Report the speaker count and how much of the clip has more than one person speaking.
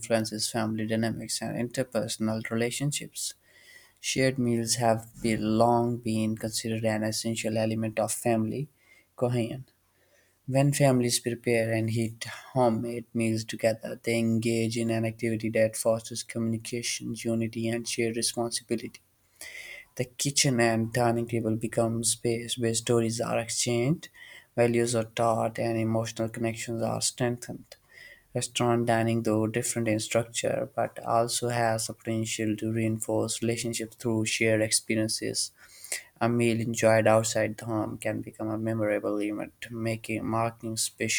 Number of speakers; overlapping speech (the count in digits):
1, no overlap